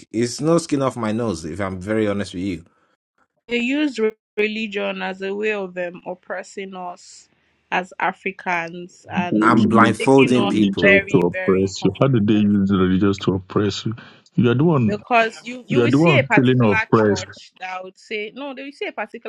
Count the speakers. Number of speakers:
3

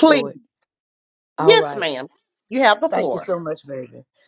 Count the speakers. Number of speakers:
2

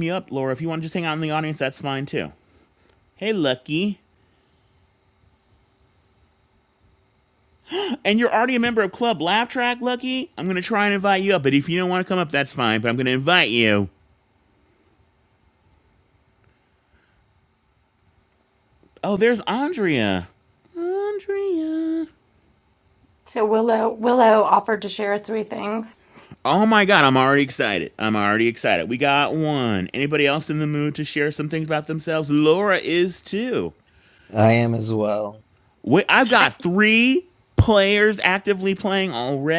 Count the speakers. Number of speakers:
3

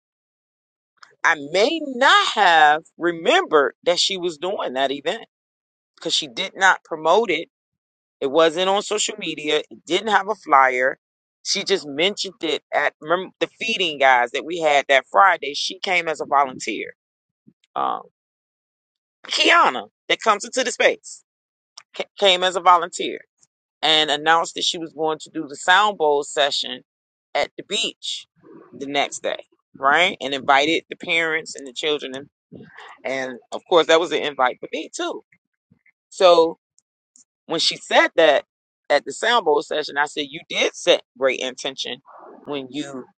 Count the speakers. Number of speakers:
1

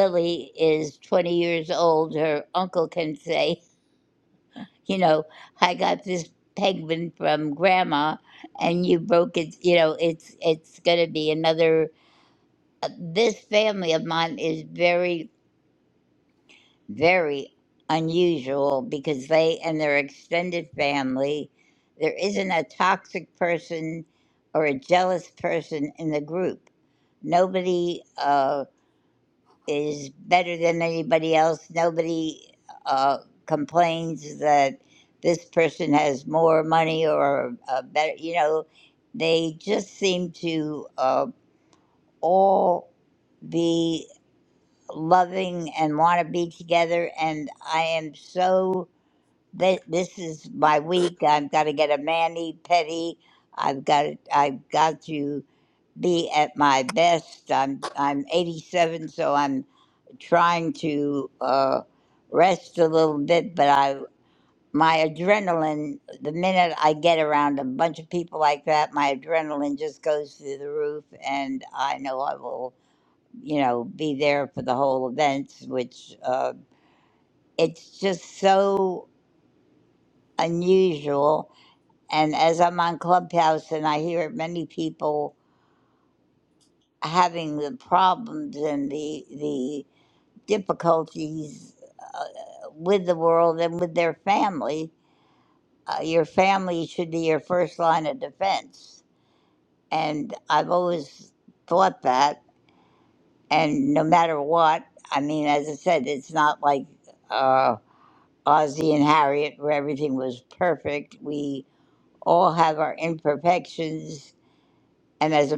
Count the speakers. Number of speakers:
1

